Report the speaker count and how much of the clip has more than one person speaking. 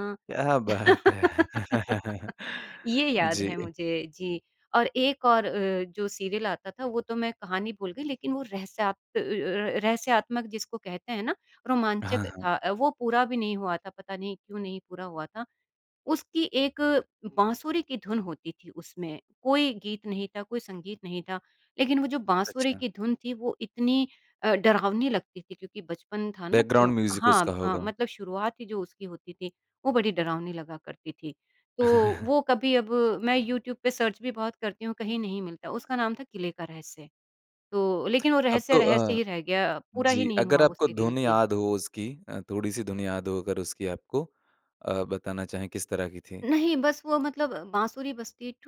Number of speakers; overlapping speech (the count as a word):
two, about 10%